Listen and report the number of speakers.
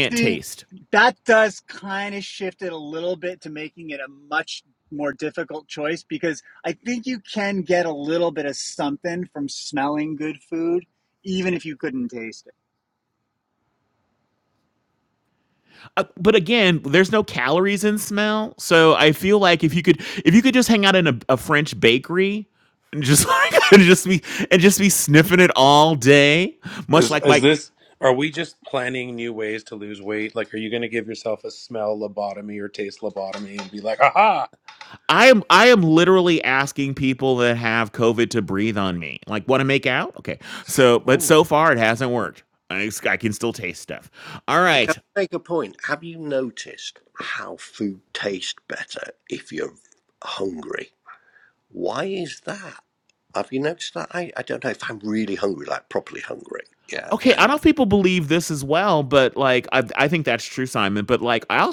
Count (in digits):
4